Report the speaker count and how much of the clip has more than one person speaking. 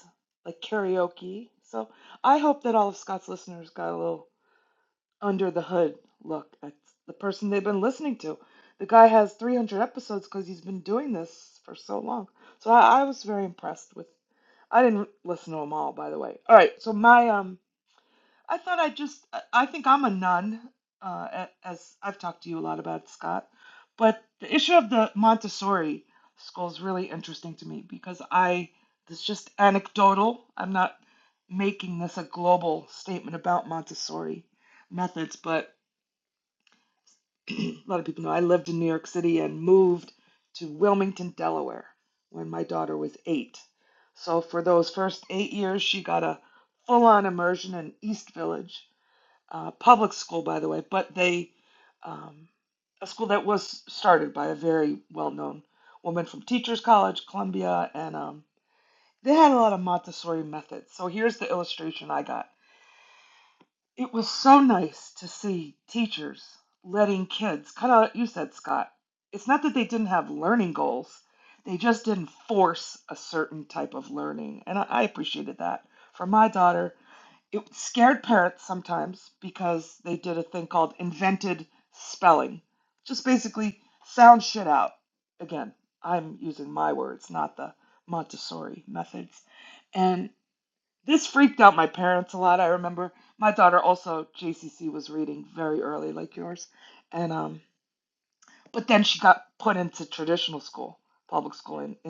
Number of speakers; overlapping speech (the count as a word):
one, no overlap